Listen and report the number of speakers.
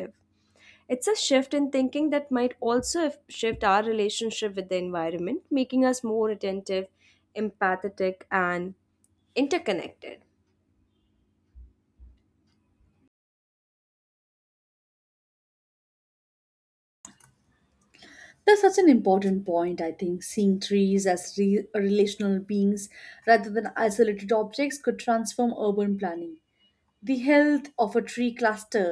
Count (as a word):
two